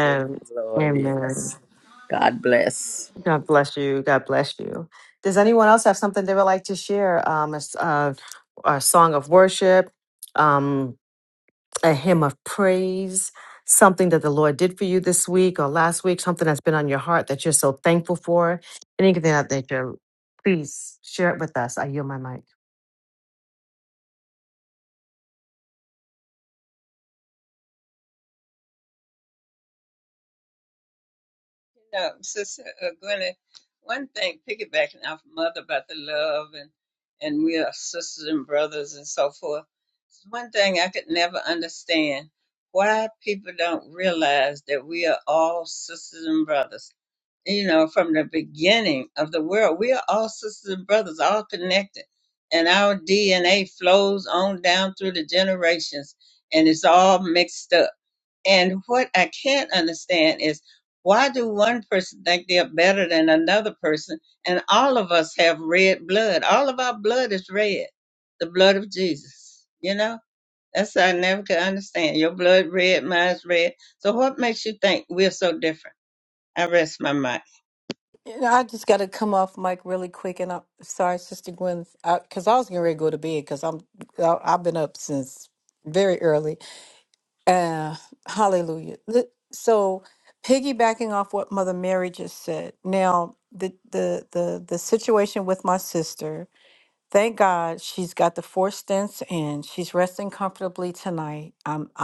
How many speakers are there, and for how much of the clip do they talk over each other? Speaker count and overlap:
four, about 1%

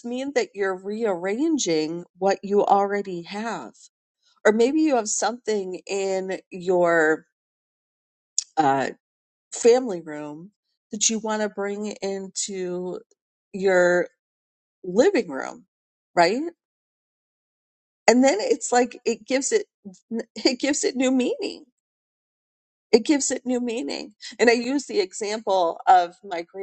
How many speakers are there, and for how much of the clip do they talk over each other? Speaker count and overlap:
one, no overlap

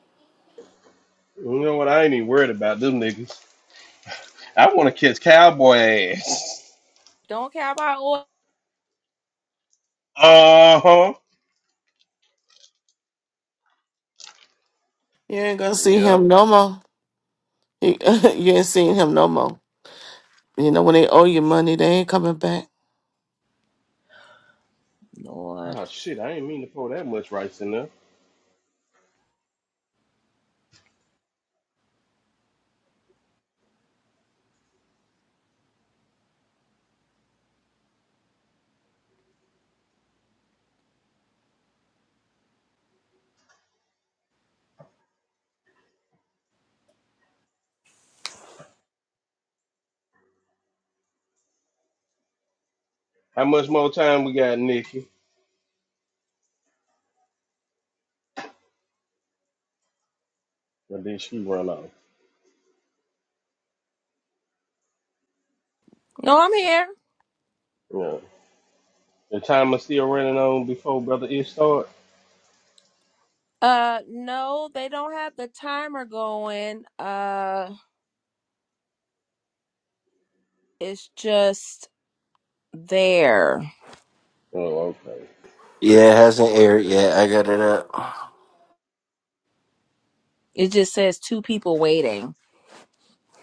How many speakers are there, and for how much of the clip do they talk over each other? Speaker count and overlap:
four, about 1%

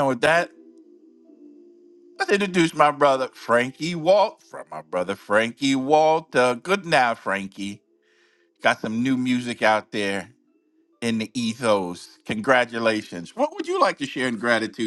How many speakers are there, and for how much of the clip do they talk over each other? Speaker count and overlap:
one, no overlap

